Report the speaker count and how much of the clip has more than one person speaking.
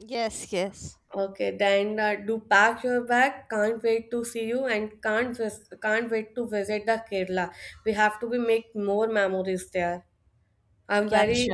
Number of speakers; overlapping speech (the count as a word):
two, about 5%